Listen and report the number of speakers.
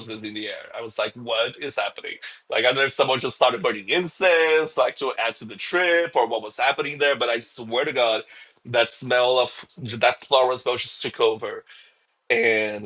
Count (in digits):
1